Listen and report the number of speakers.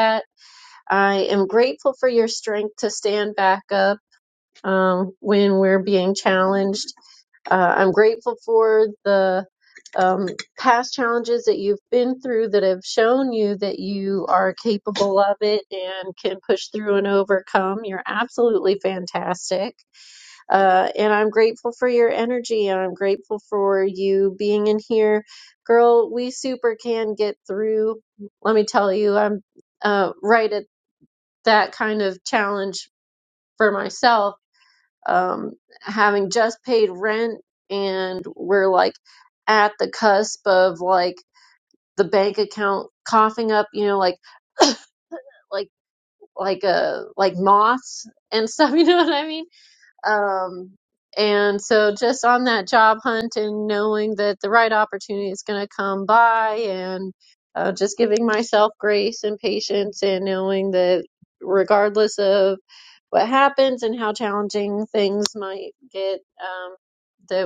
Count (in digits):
1